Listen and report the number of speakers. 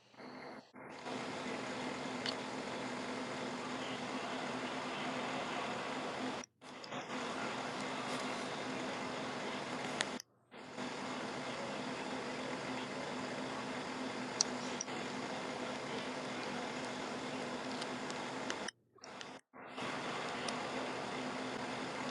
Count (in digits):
0